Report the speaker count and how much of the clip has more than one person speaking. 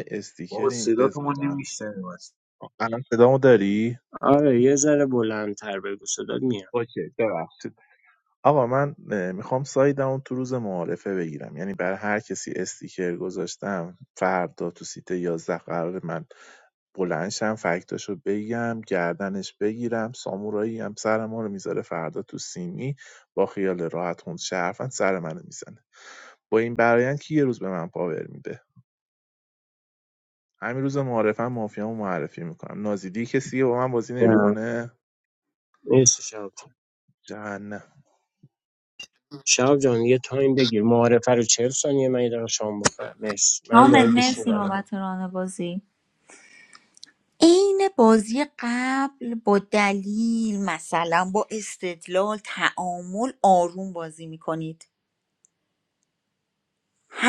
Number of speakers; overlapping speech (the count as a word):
four, about 4%